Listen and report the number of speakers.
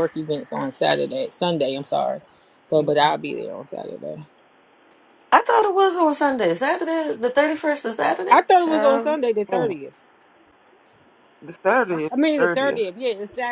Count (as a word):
three